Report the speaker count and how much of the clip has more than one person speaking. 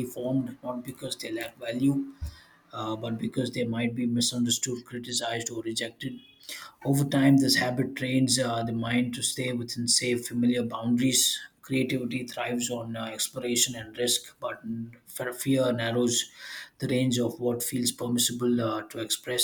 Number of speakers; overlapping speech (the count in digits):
1, no overlap